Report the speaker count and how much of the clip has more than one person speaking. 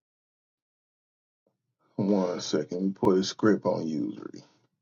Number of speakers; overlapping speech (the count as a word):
one, no overlap